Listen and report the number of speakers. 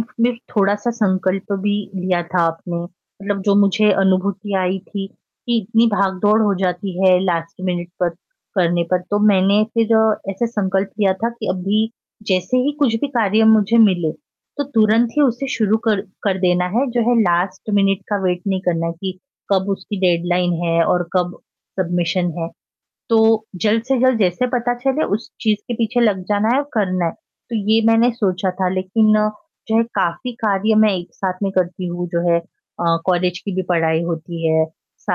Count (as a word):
one